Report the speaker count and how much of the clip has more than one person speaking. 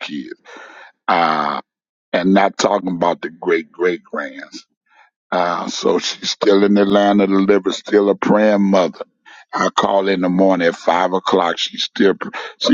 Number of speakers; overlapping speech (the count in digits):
1, no overlap